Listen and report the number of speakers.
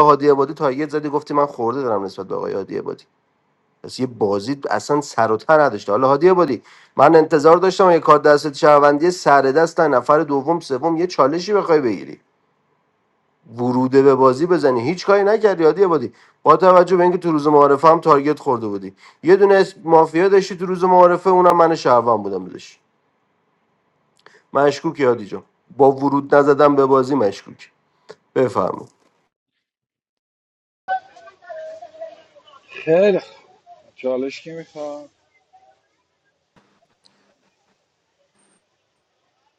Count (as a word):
two